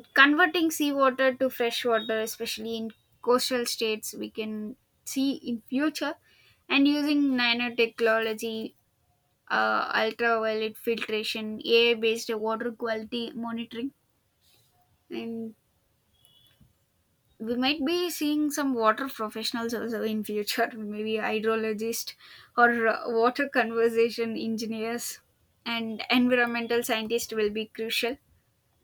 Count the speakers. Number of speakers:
1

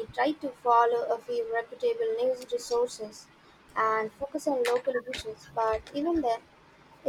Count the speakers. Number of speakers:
1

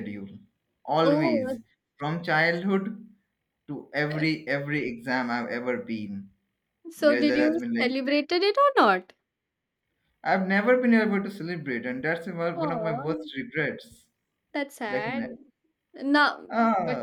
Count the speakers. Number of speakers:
2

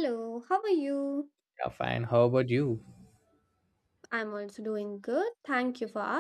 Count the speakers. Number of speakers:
2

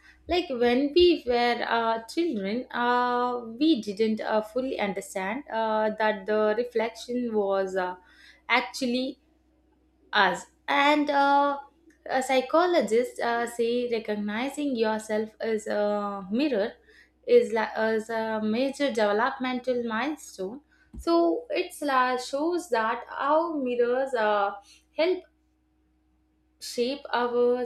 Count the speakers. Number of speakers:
1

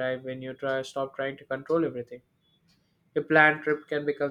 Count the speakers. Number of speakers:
1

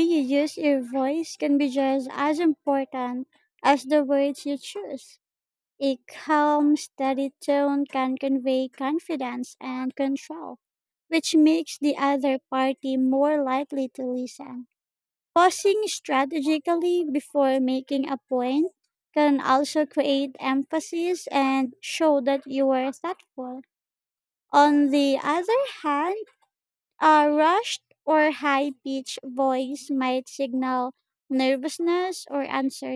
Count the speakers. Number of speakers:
1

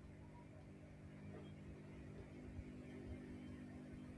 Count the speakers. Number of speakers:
0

